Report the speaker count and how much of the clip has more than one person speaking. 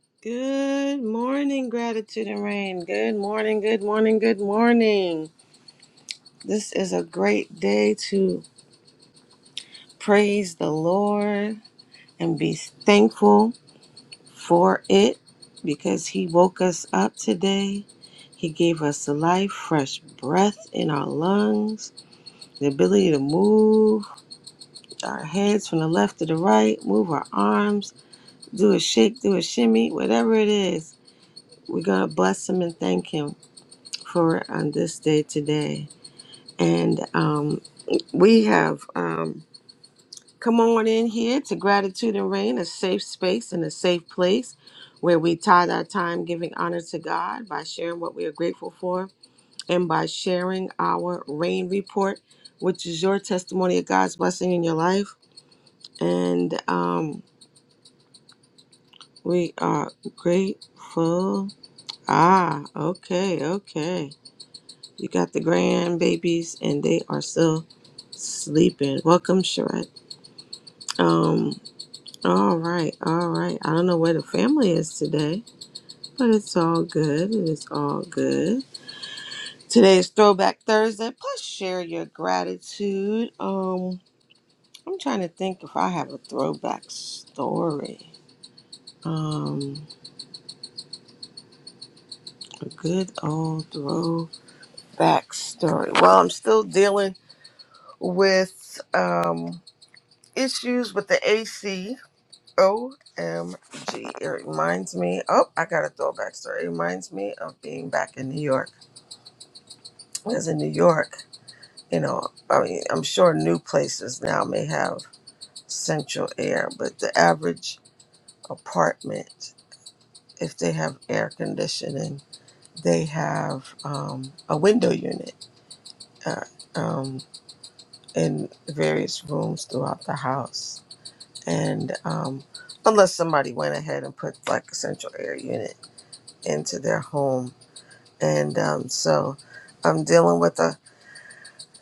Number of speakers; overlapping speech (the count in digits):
1, no overlap